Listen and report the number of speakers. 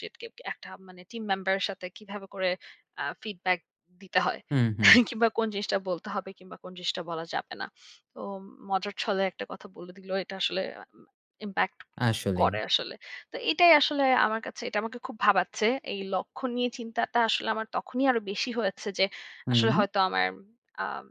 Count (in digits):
2